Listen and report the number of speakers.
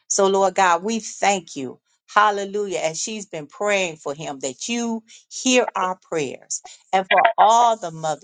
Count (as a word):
one